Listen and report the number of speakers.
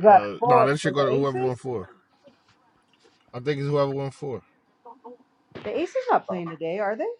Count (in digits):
2